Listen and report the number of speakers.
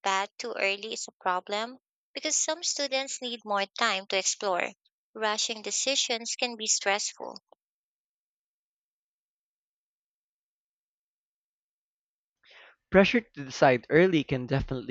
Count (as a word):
two